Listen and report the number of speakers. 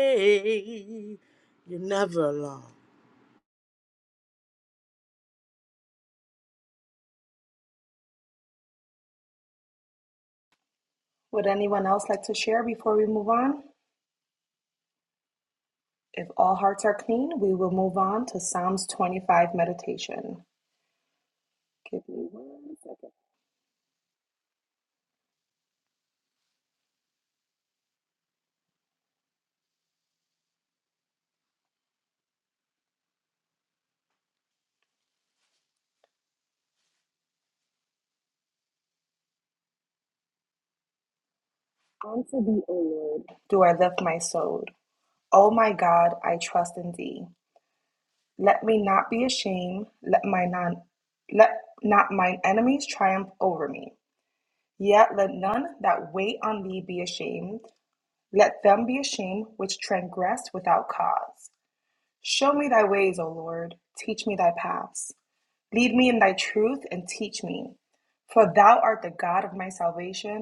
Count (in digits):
2